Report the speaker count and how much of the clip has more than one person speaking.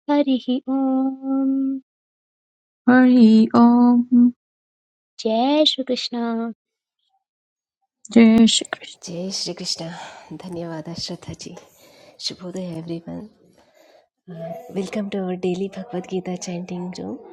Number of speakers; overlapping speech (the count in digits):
3, no overlap